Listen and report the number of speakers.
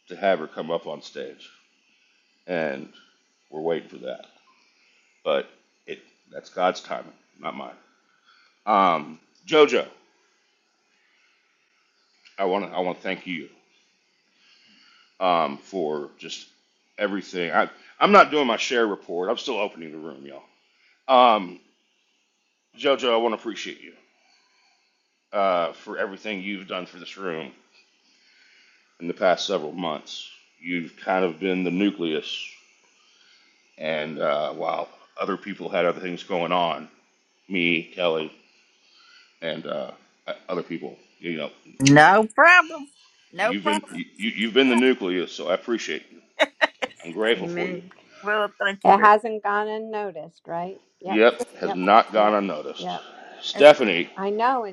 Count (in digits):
3